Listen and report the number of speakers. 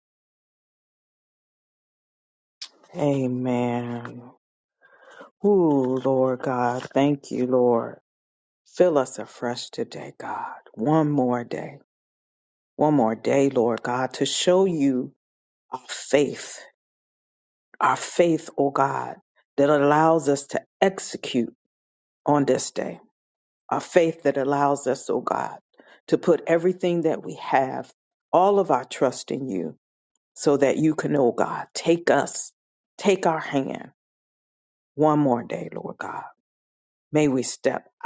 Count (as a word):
one